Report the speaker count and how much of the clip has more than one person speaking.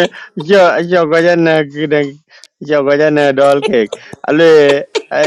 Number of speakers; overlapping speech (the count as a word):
one, no overlap